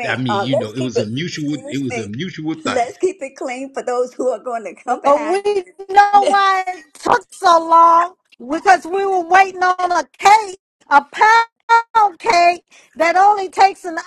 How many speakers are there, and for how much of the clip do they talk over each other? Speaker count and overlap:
three, about 21%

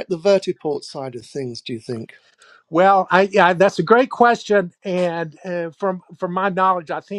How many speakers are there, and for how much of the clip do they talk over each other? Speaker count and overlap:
two, no overlap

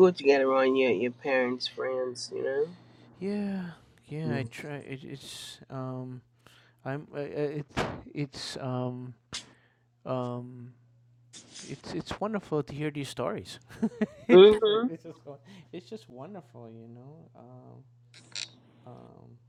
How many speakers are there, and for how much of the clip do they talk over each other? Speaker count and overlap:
two, about 3%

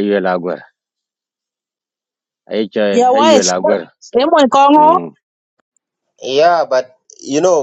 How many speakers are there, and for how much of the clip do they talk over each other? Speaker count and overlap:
three, about 11%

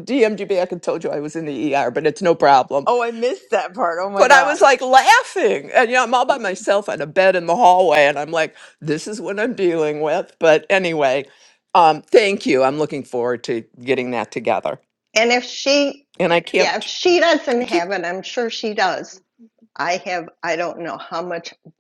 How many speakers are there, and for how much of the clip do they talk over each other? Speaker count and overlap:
three, about 3%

